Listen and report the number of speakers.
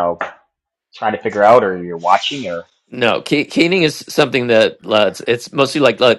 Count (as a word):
two